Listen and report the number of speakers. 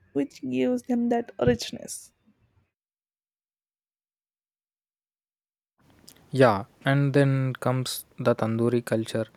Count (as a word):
two